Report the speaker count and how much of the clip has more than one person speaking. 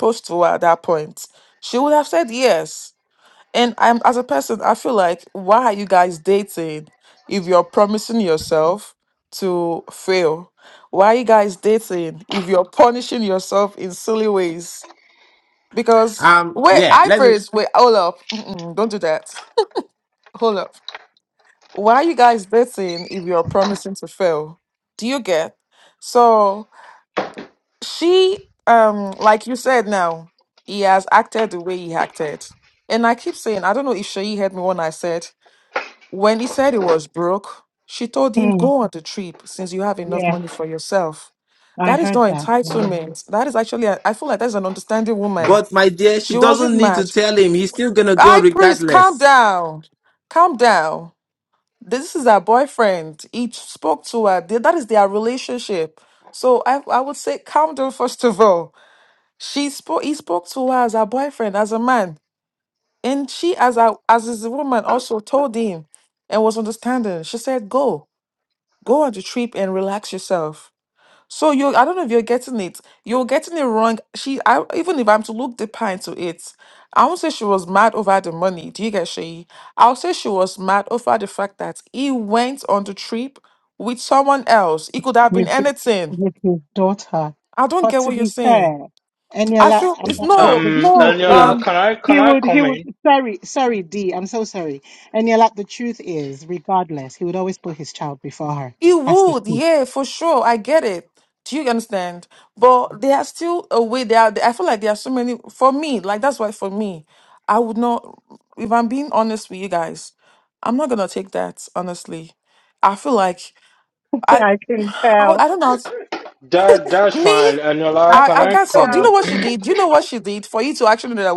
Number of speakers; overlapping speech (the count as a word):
four, about 9%